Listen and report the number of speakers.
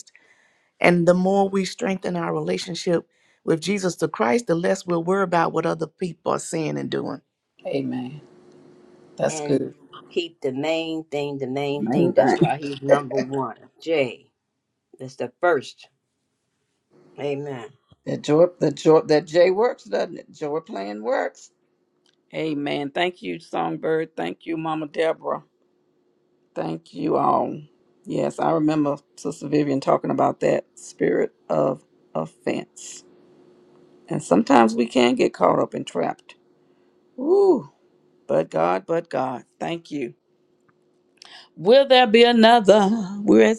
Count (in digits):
3